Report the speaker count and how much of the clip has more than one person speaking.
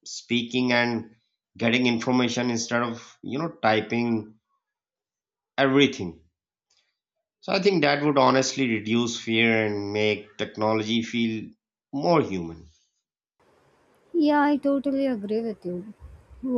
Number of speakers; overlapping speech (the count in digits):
2, no overlap